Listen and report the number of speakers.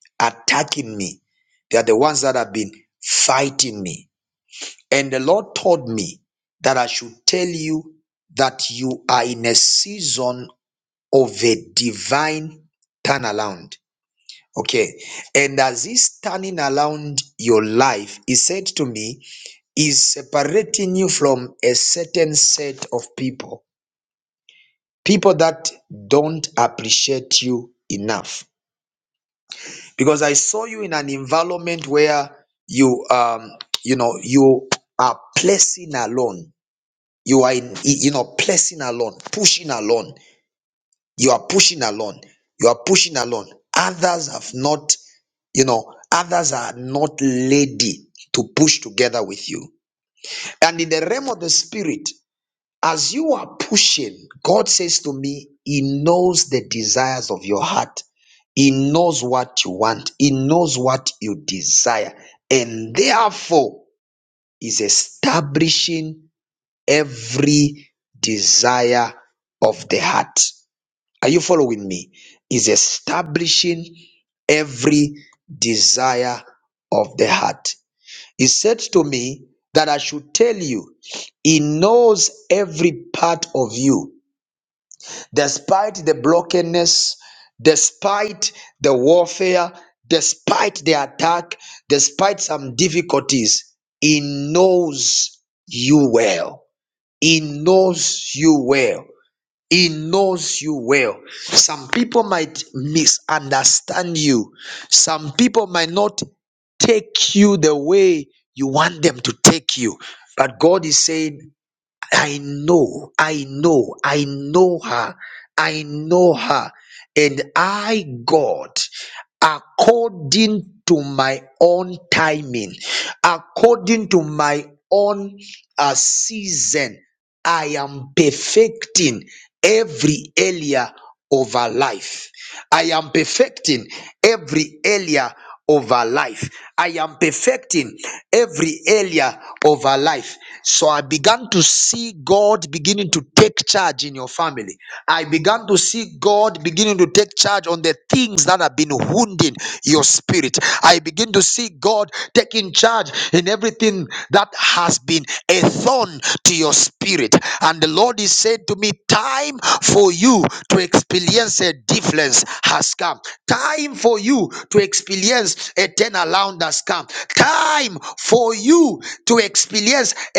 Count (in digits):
1